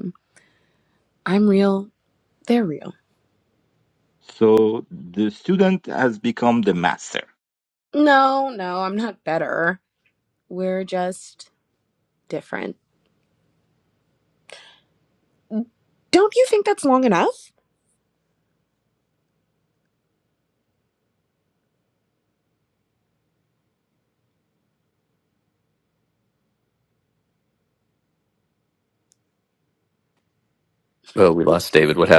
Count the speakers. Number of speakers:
three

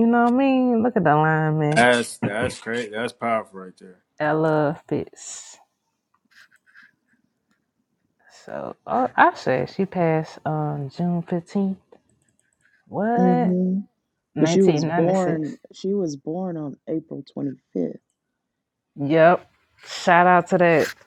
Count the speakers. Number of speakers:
three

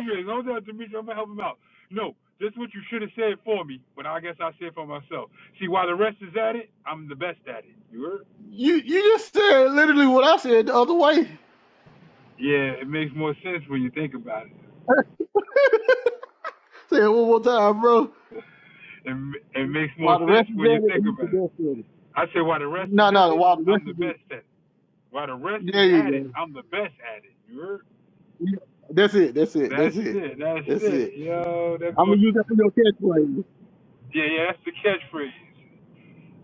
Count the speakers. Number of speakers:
two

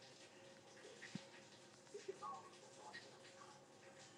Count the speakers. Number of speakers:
zero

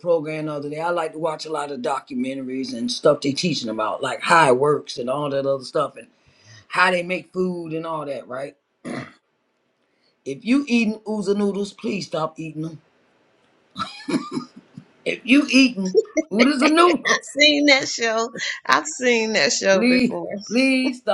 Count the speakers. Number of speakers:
two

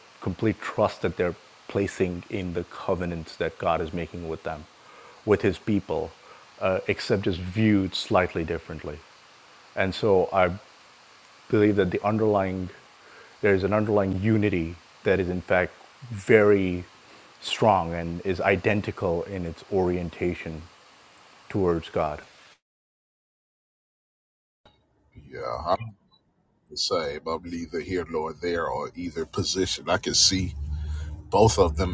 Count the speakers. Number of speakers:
two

